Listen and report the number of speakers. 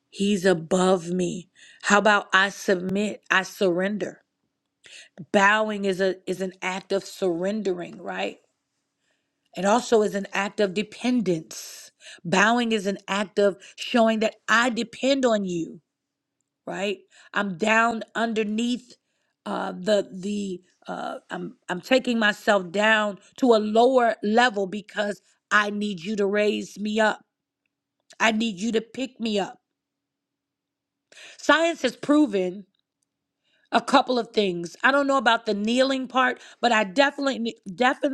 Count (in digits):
1